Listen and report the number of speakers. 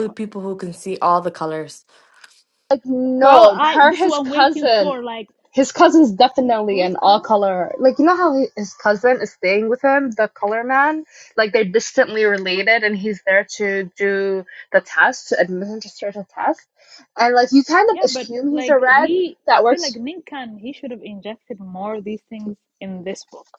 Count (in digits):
3